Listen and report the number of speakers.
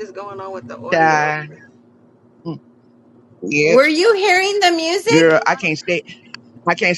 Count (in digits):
3